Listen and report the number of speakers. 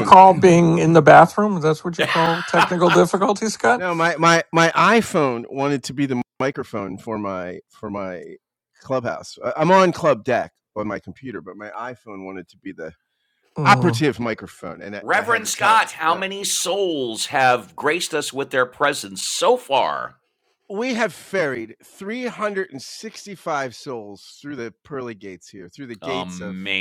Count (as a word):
three